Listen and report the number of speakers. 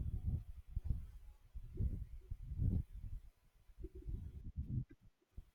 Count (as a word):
zero